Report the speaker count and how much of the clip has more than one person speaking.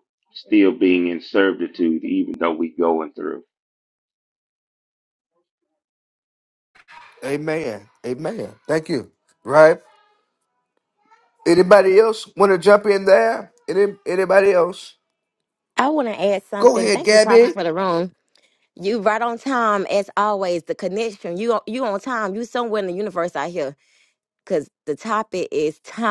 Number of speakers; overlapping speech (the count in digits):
3, about 4%